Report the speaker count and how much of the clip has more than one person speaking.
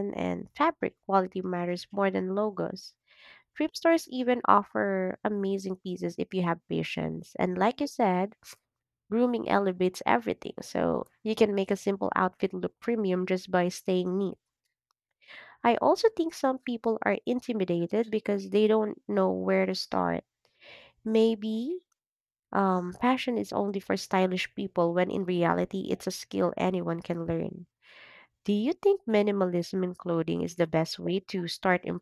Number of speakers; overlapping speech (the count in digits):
1, no overlap